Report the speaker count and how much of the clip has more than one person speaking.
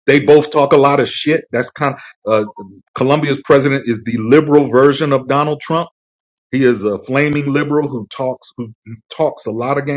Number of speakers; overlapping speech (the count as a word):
one, no overlap